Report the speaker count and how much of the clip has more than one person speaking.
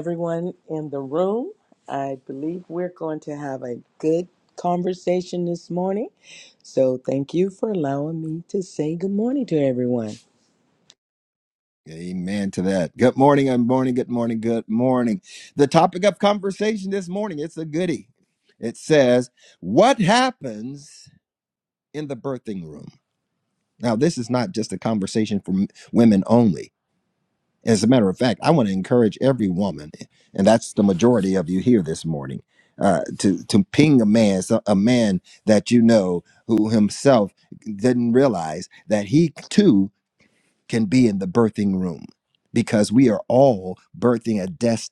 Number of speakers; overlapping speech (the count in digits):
2, no overlap